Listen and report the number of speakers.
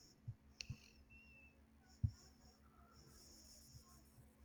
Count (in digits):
0